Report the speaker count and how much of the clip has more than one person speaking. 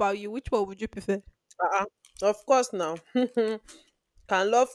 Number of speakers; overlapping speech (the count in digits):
2, no overlap